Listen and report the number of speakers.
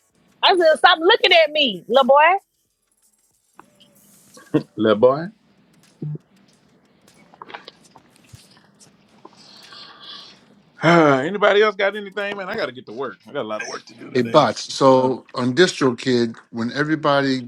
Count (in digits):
3